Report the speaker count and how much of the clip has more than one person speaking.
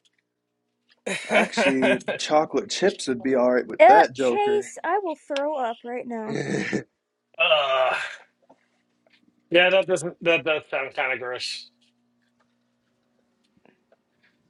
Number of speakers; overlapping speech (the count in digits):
3, about 7%